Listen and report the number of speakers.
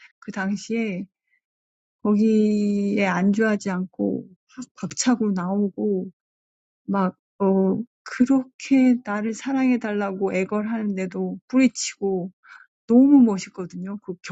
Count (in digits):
1